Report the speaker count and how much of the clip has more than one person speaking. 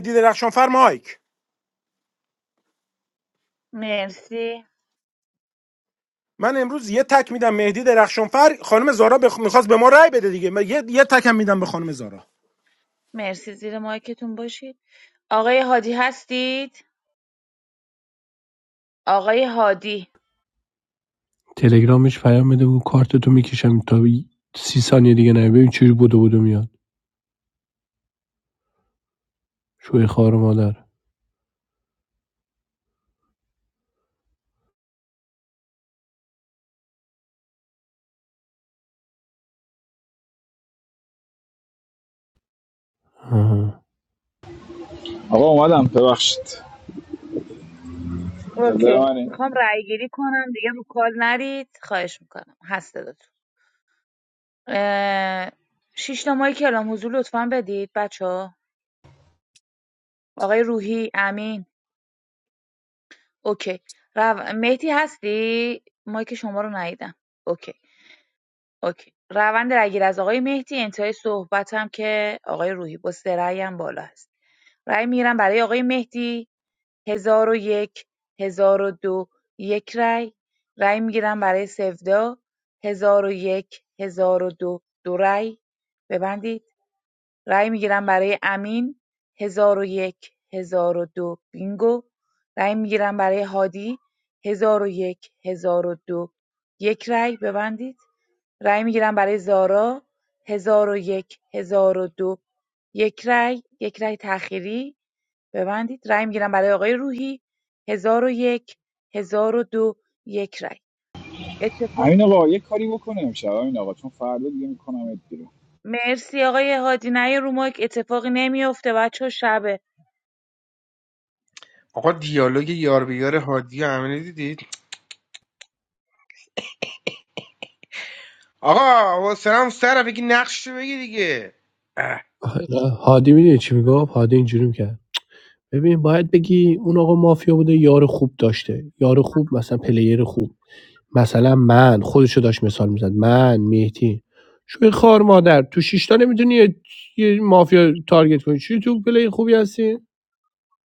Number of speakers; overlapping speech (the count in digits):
5, about 1%